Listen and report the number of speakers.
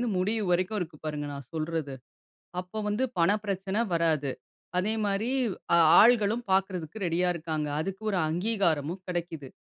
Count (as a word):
one